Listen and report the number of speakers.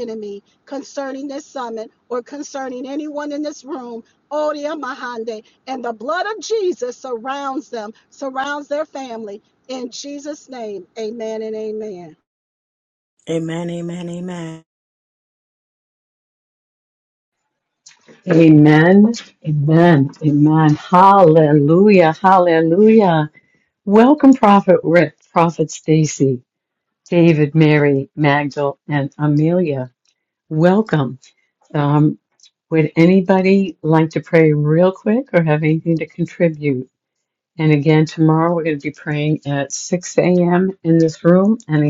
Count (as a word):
three